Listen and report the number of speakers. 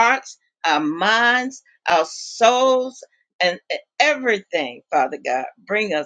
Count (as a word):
one